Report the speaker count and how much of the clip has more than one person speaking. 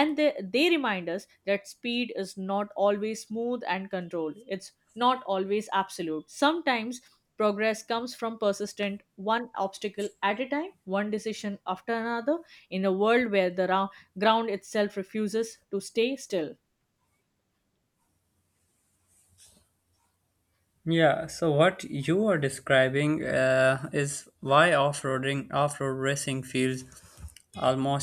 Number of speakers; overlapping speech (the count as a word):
two, no overlap